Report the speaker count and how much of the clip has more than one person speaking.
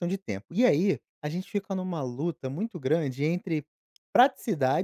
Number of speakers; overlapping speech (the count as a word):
one, no overlap